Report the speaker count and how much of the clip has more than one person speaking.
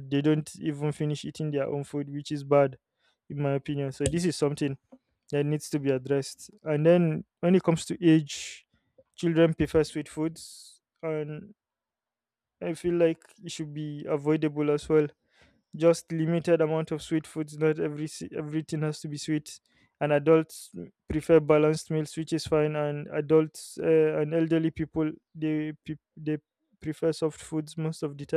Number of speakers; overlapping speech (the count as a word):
one, no overlap